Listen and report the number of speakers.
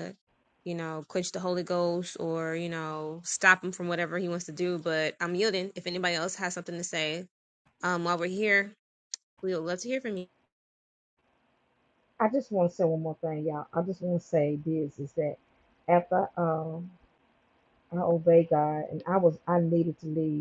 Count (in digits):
2